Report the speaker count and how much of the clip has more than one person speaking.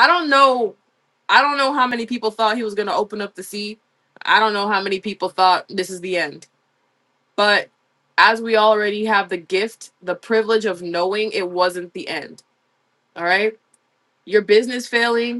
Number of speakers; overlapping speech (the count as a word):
one, no overlap